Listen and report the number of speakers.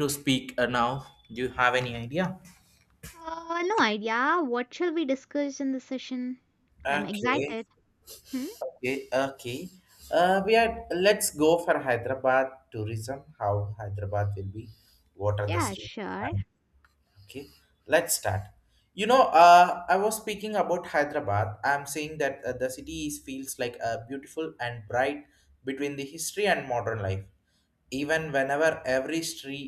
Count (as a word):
two